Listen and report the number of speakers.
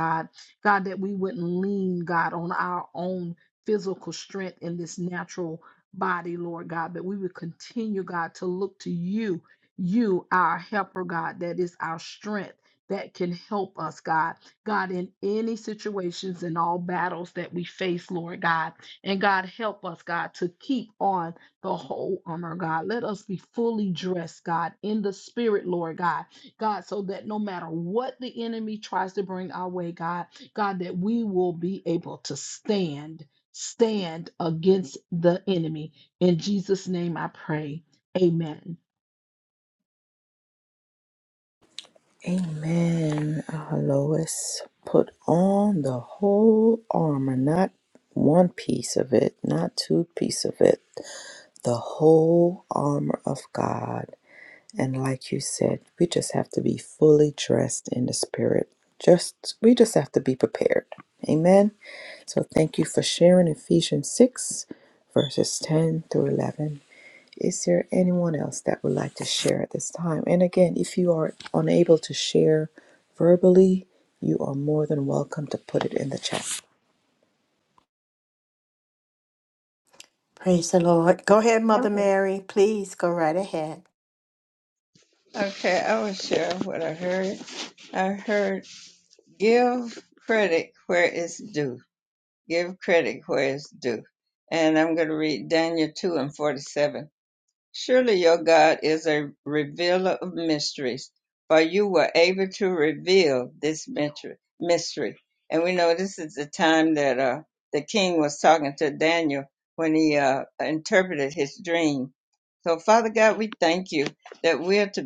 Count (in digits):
4